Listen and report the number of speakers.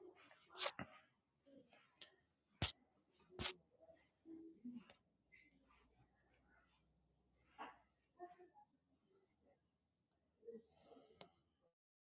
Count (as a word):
zero